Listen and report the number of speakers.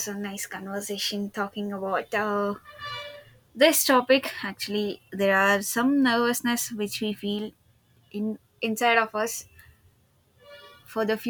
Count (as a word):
one